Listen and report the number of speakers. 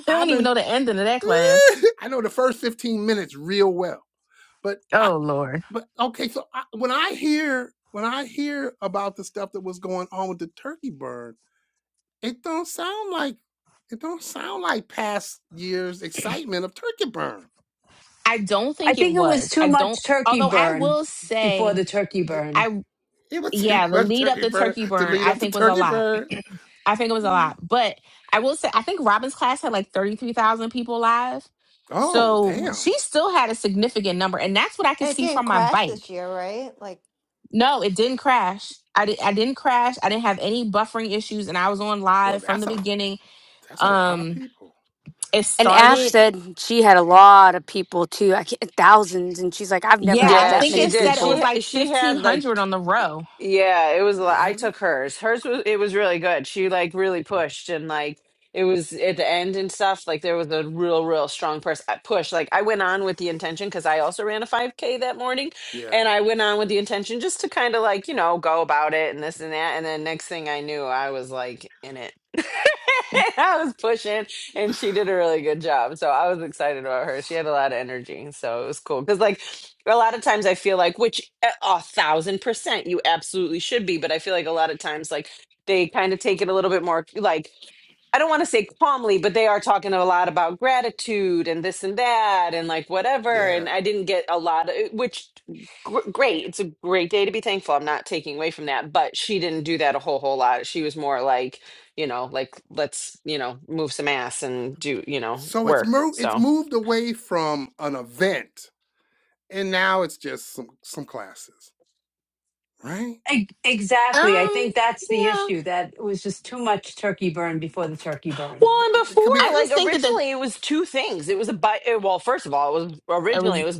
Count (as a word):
six